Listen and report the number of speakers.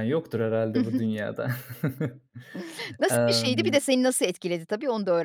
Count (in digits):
2